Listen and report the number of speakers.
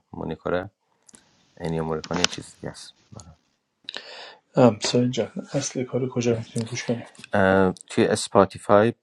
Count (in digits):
2